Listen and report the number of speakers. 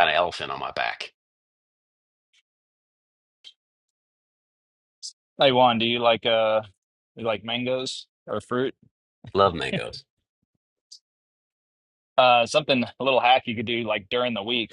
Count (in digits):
2